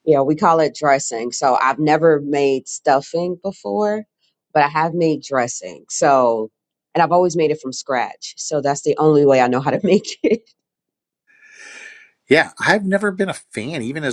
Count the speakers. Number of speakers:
2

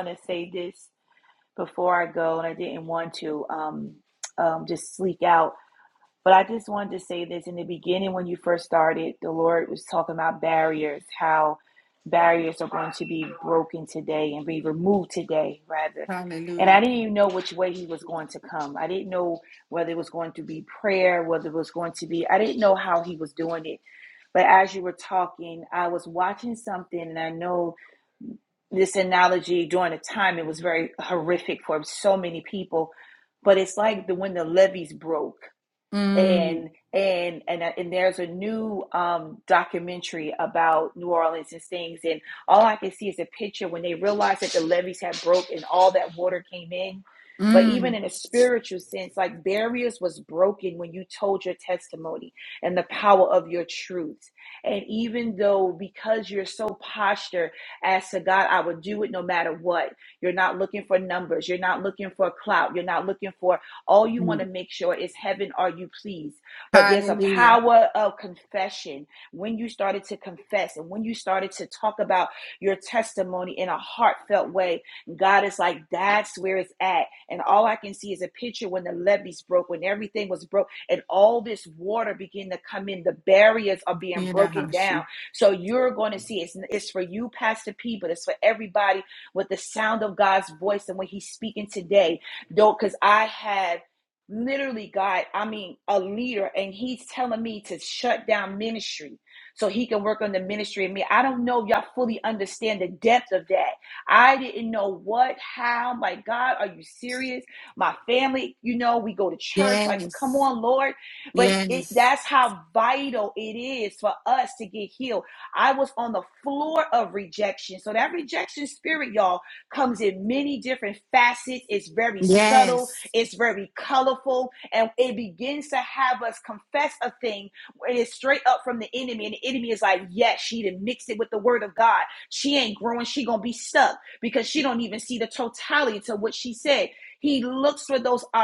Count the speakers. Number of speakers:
2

